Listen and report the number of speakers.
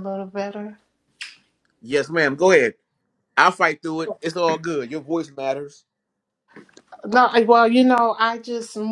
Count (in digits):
2